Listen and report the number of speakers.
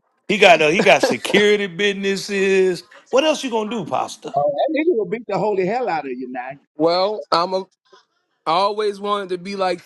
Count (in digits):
3